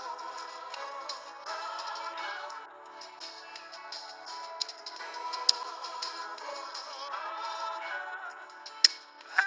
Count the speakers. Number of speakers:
0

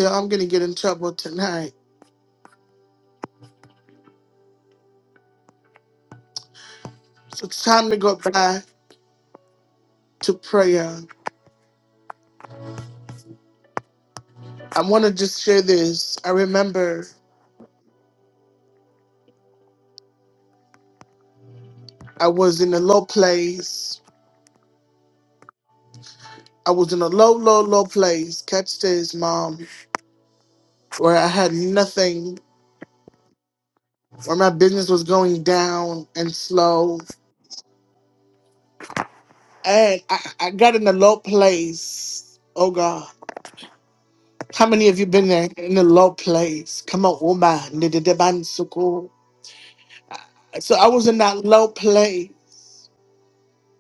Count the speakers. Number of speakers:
1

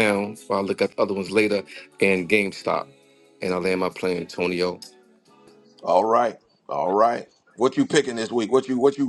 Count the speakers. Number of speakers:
2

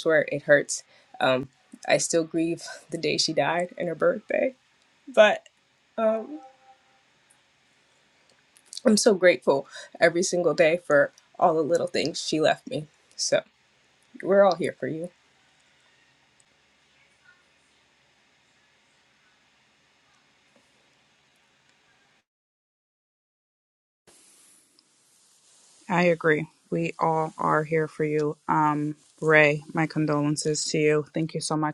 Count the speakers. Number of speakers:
2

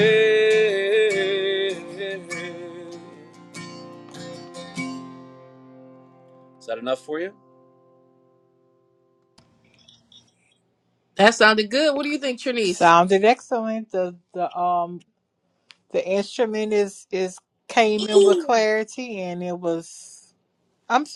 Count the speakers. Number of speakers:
3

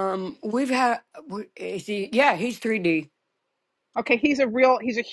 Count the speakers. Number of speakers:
2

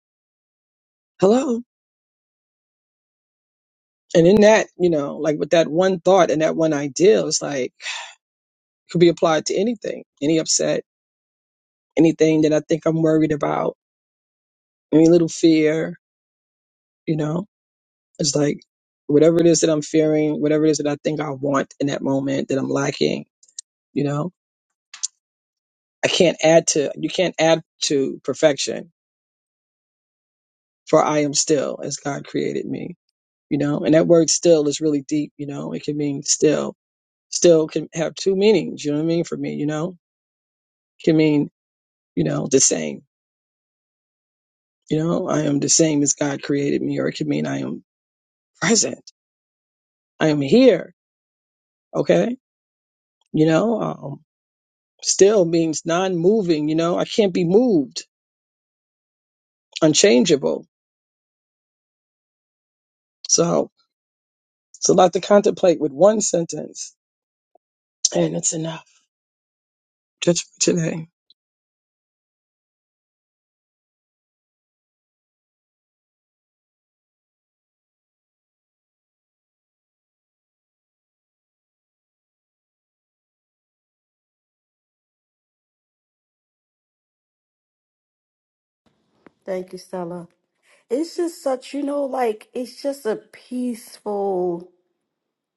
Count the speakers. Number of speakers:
2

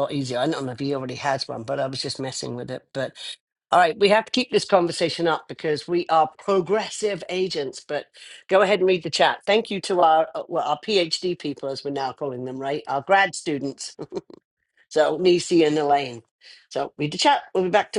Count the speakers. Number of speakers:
1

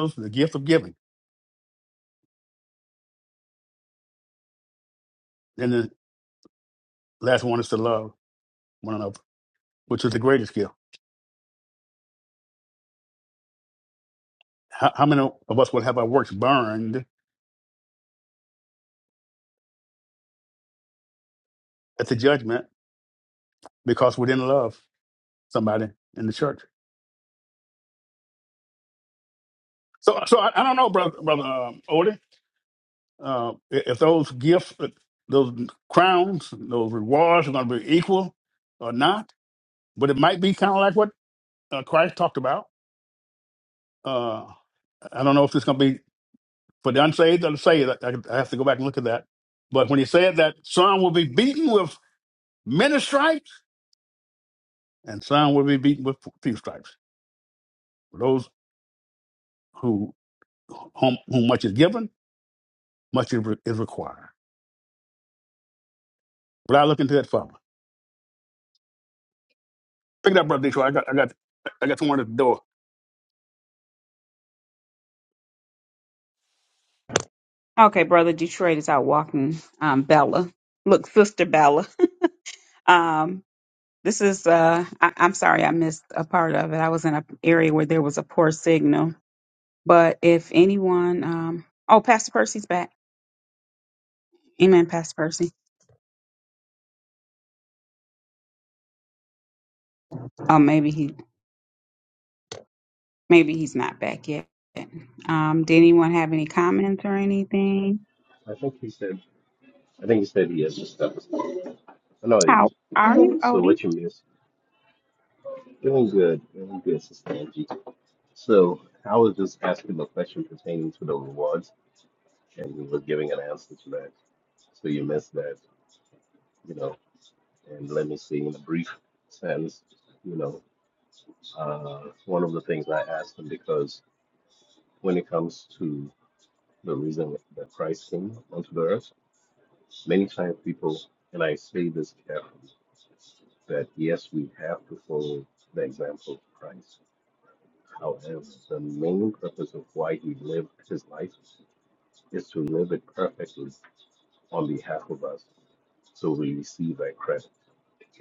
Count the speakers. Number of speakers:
3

